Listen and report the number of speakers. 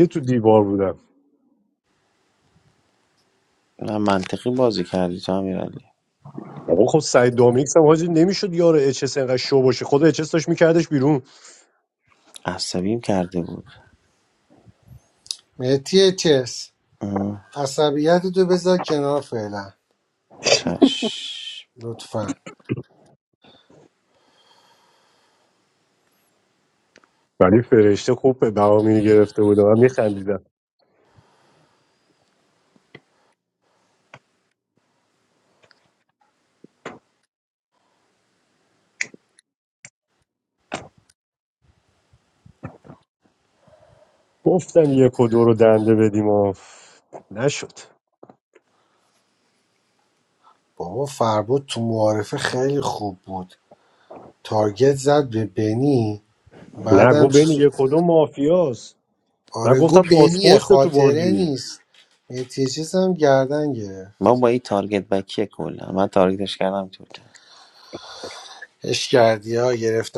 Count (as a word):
three